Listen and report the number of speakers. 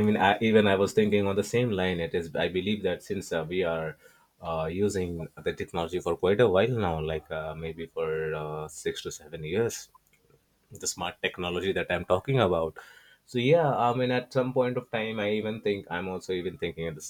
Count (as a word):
one